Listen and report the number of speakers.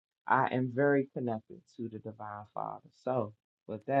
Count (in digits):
1